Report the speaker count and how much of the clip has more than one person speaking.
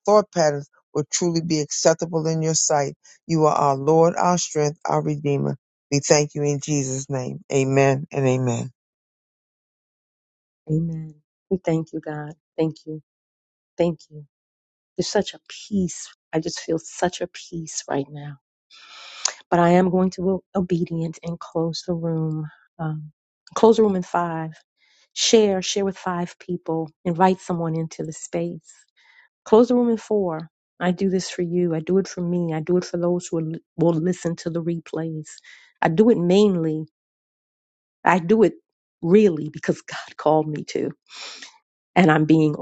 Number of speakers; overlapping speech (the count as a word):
two, no overlap